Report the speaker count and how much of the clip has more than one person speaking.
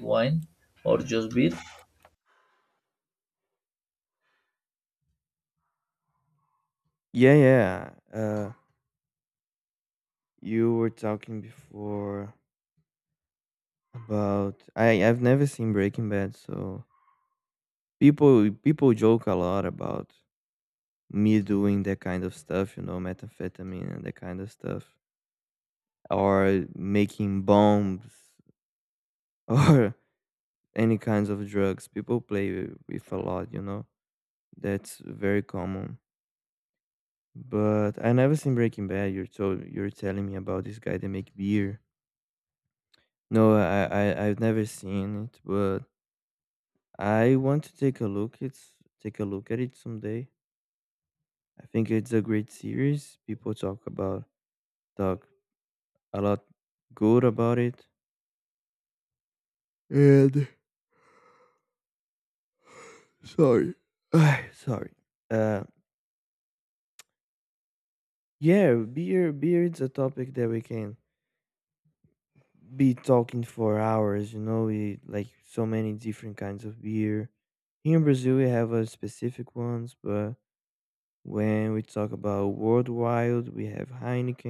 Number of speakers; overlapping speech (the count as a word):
two, no overlap